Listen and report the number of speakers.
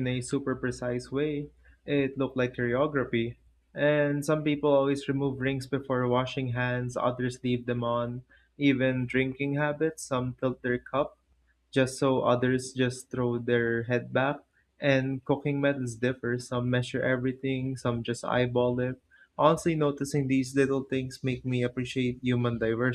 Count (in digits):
1